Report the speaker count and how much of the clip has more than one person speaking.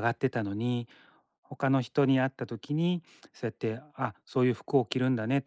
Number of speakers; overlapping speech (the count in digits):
1, no overlap